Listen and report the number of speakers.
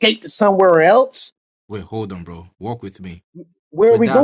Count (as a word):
two